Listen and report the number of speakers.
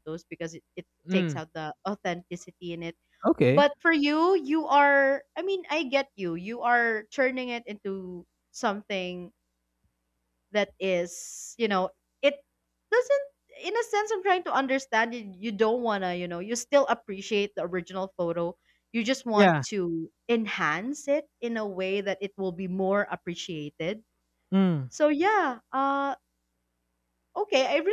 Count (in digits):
2